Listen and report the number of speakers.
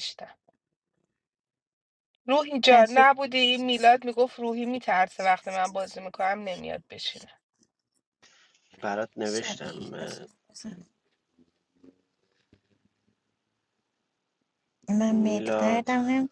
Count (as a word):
three